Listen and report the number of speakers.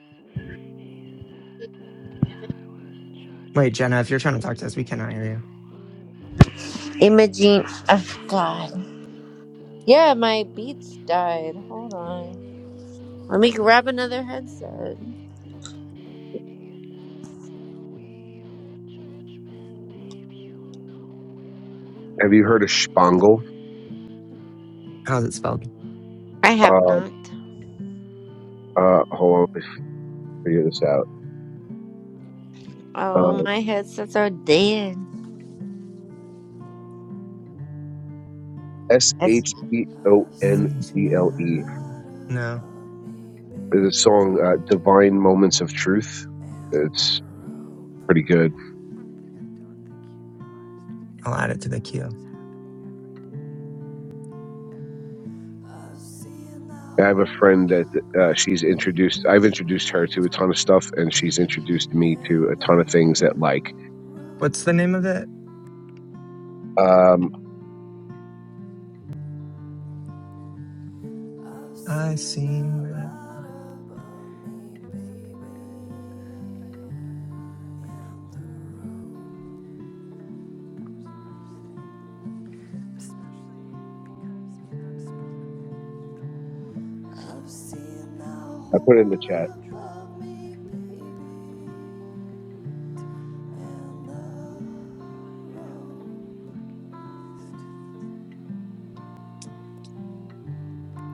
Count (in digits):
3